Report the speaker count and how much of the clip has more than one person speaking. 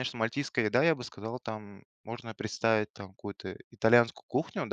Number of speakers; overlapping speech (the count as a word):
one, no overlap